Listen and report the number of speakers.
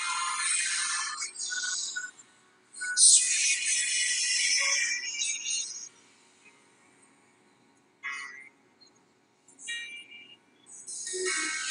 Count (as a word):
zero